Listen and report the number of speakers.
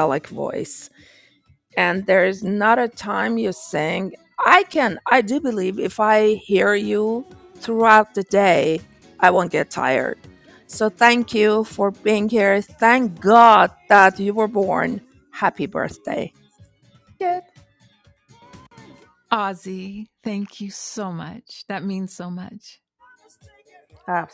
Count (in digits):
2